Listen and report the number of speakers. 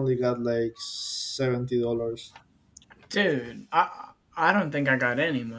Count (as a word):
two